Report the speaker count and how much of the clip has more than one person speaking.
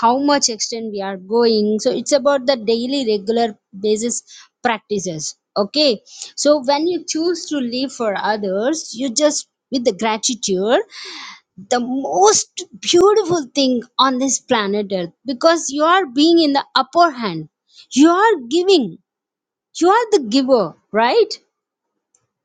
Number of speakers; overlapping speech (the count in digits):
1, no overlap